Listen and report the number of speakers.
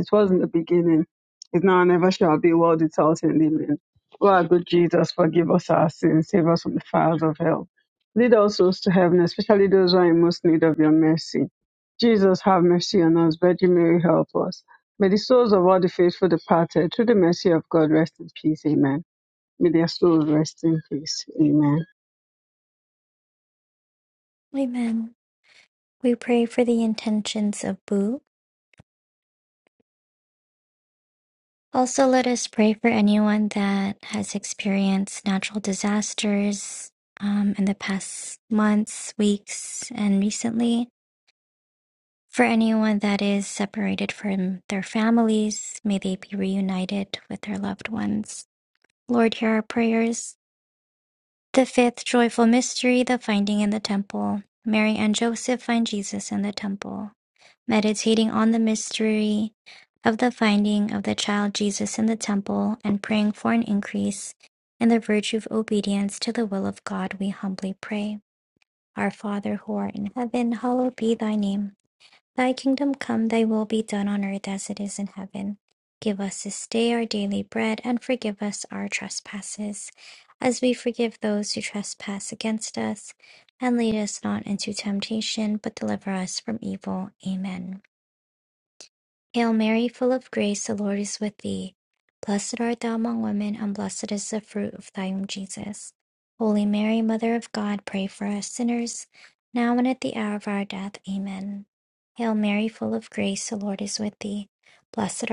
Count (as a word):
two